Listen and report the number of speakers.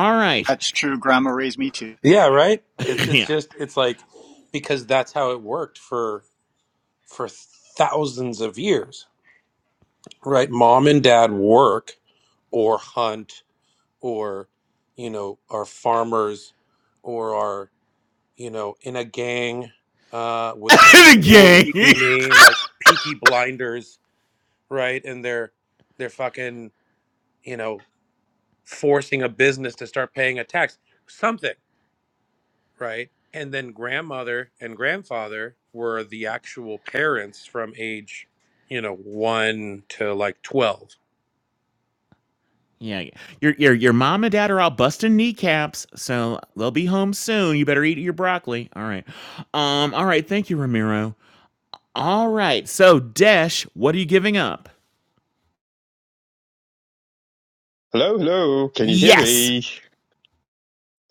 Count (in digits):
4